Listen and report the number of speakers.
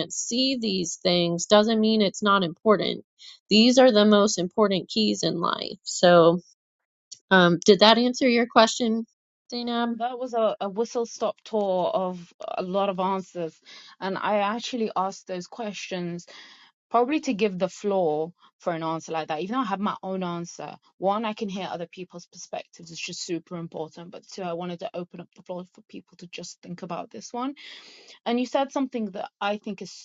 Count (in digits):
2